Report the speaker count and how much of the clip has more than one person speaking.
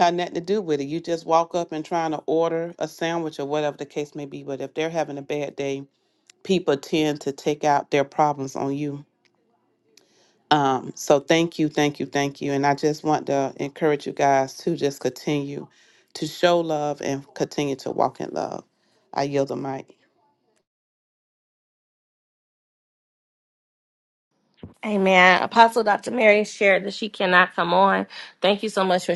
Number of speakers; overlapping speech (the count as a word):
two, no overlap